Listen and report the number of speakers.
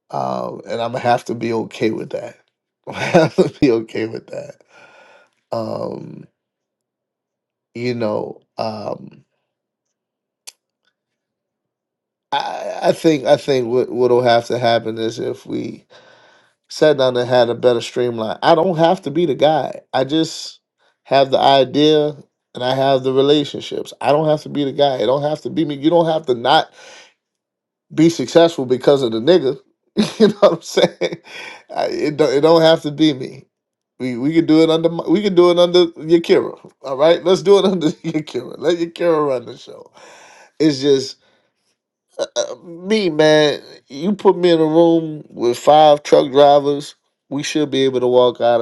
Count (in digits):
1